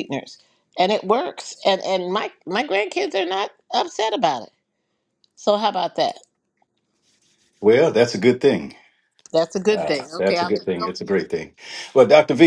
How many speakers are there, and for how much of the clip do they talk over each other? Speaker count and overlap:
2, about 10%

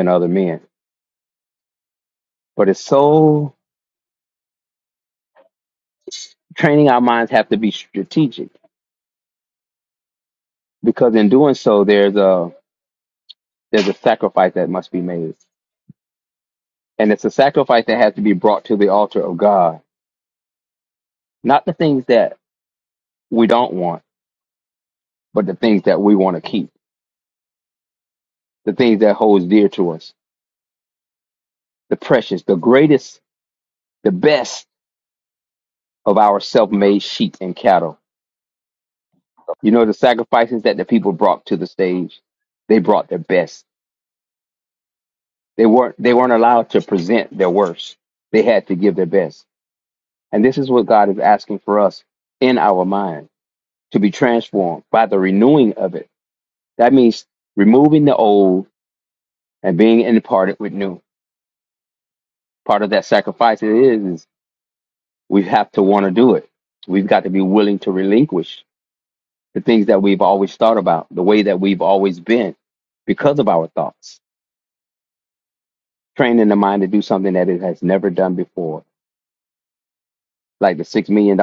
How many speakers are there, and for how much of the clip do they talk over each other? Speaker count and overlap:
1, no overlap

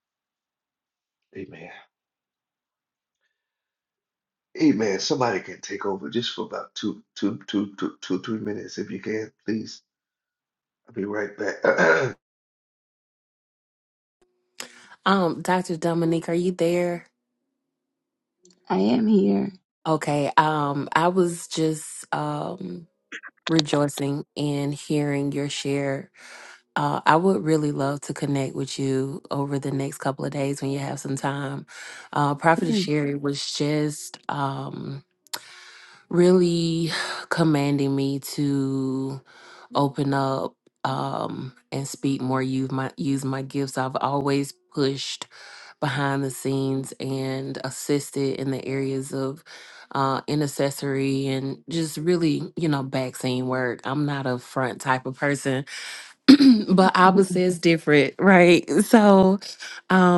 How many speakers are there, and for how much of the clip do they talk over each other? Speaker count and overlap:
3, about 1%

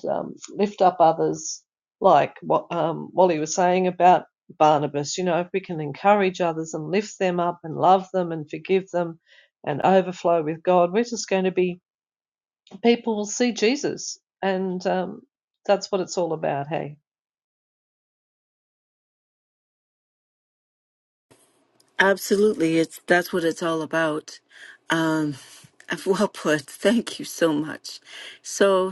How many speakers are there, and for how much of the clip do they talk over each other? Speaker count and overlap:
2, no overlap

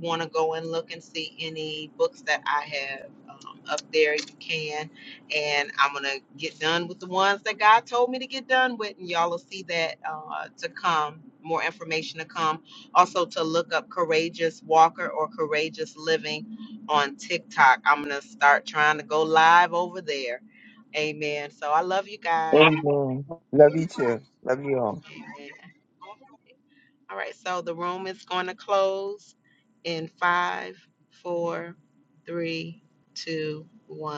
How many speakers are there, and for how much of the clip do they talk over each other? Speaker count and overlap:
2, about 1%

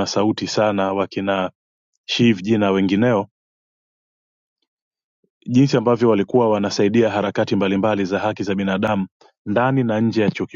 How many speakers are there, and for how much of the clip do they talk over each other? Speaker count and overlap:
1, no overlap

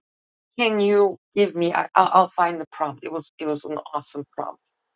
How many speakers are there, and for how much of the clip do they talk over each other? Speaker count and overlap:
1, no overlap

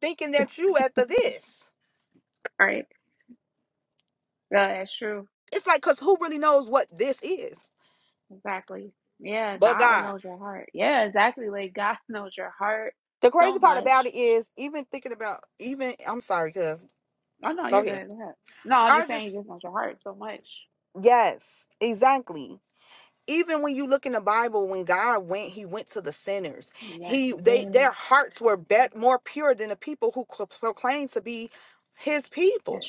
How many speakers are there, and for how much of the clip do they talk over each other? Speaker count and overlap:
2, about 8%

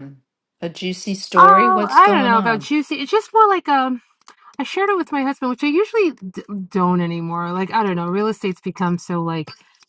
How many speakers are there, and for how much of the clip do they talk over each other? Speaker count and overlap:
2, about 13%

